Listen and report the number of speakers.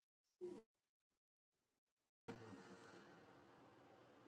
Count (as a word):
zero